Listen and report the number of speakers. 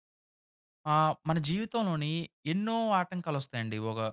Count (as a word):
one